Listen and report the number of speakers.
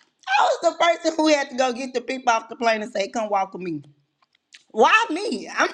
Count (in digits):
1